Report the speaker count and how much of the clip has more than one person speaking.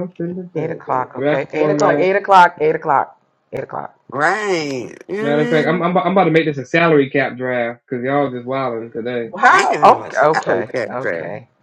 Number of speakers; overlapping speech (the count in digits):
3, about 32%